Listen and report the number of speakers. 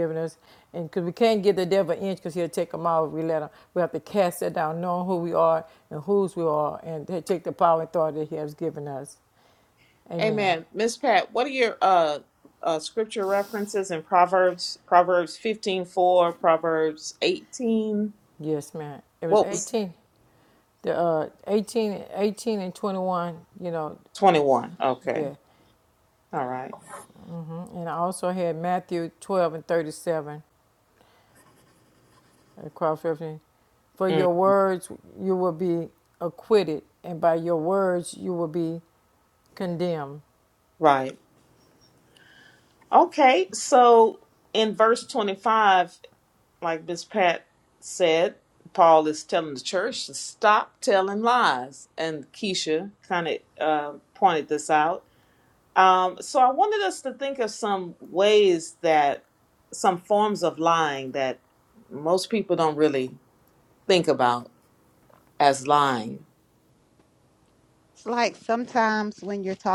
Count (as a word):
three